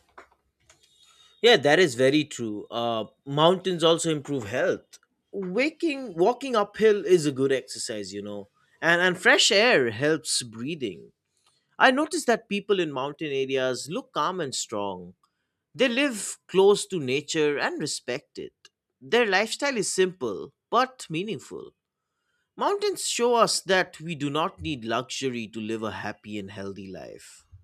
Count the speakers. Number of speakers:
1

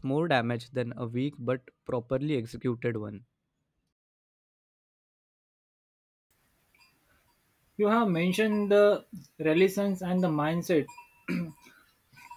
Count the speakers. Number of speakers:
2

